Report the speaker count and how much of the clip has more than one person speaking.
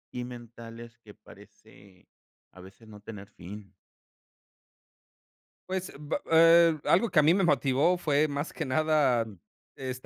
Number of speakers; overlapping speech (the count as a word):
two, under 1%